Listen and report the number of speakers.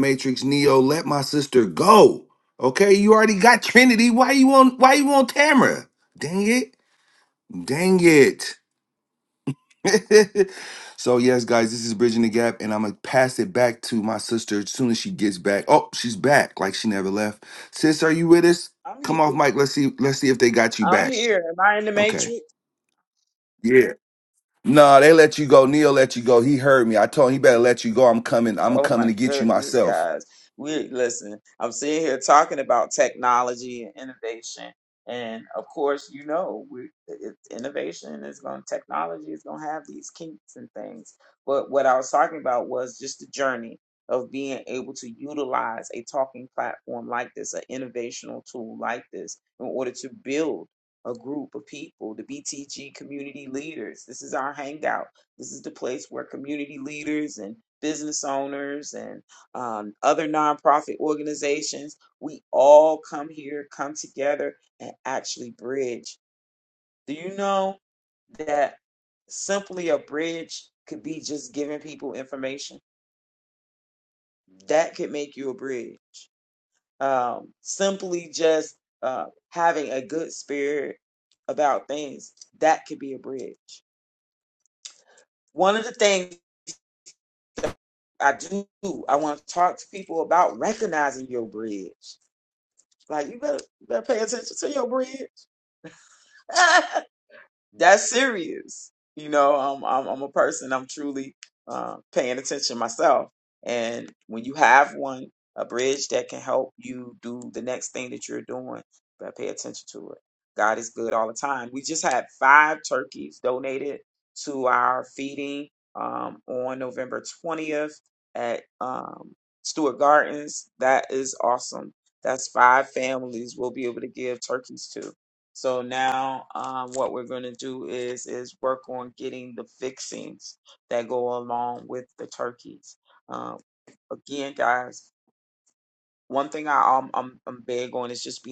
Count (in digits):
2